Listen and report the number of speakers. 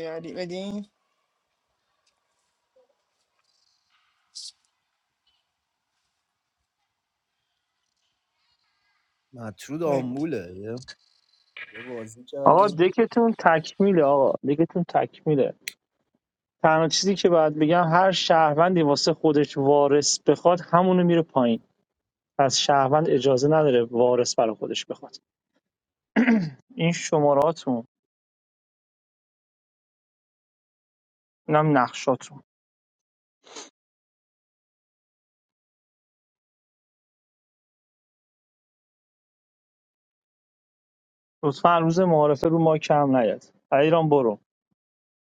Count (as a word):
three